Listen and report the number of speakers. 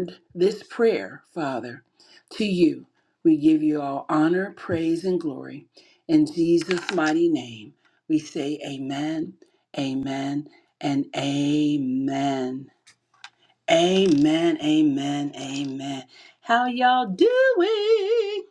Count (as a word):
one